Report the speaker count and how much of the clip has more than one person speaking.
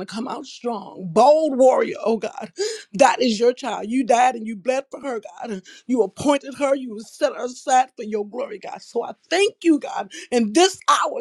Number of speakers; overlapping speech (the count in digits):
1, no overlap